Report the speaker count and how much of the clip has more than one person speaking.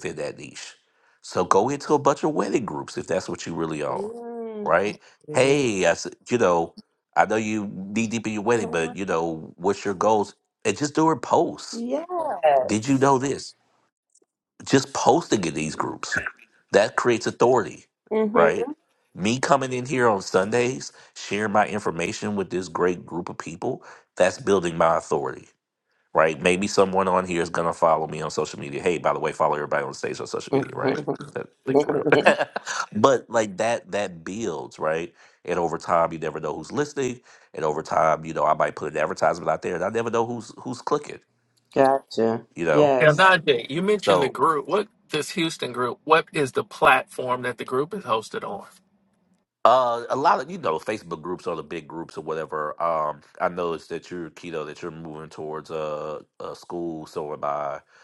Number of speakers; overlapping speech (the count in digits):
3, about 4%